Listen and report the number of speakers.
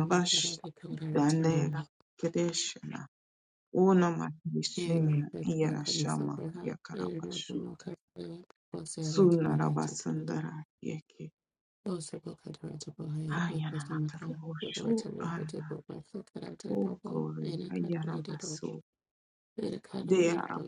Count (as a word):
two